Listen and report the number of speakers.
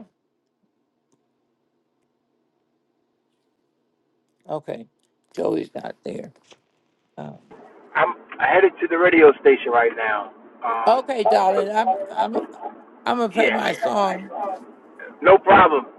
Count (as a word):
two